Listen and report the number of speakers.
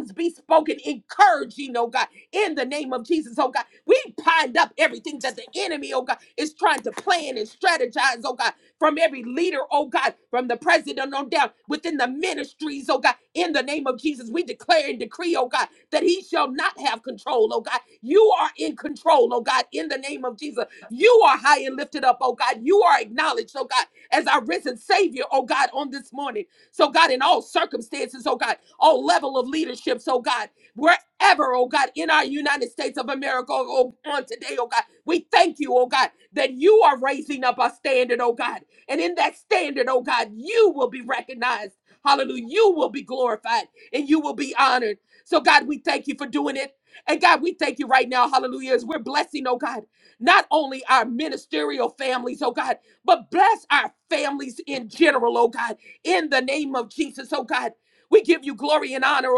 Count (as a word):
one